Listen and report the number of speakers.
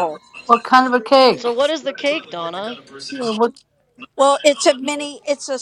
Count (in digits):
3